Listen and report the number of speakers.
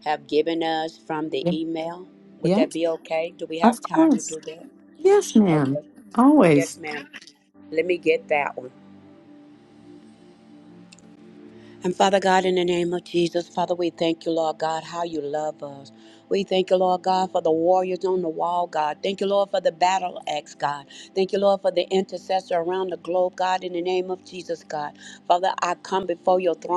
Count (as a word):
two